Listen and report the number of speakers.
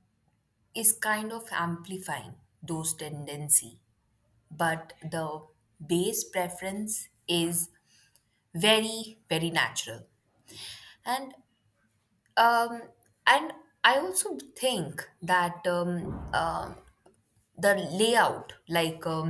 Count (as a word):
one